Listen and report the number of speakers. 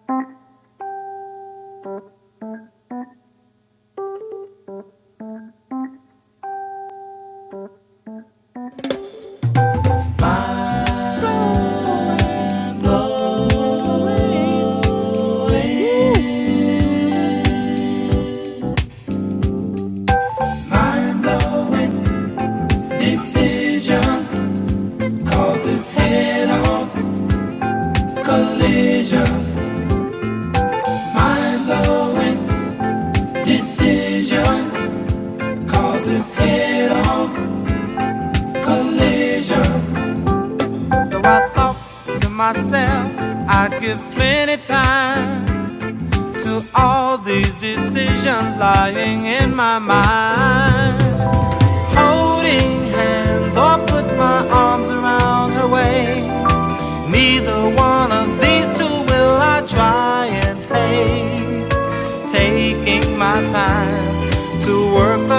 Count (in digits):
1